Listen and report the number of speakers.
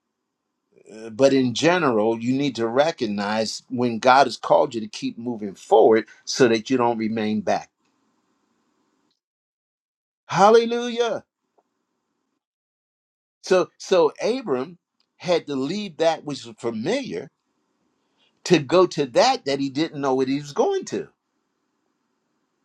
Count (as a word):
one